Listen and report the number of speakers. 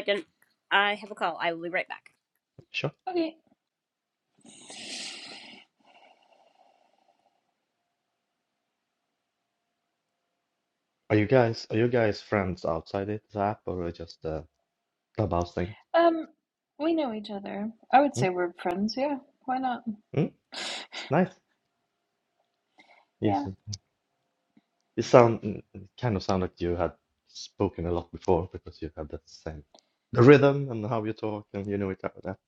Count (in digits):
3